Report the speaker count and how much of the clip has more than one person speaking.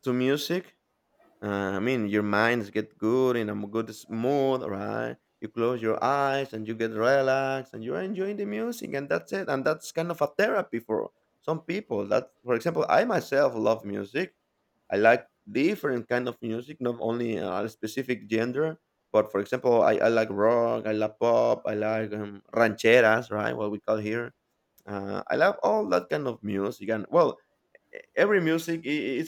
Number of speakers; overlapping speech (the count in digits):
1, no overlap